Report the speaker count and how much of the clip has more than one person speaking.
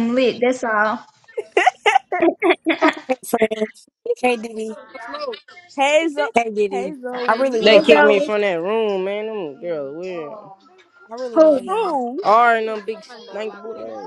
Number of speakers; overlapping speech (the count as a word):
four, about 16%